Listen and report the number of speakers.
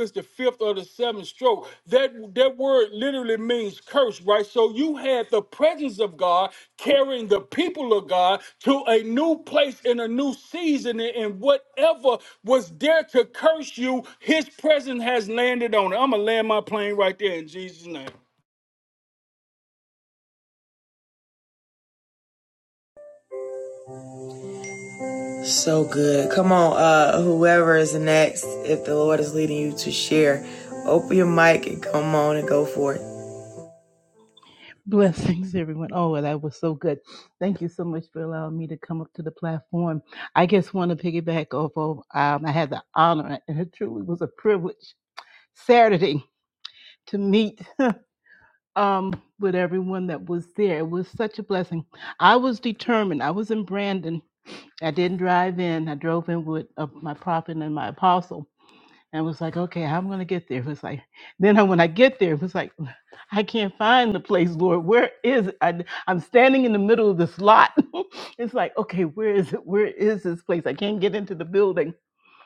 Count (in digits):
3